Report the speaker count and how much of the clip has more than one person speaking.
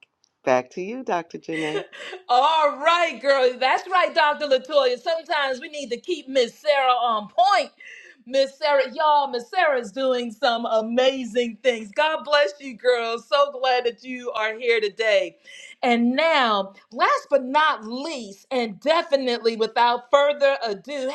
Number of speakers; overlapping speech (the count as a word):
two, no overlap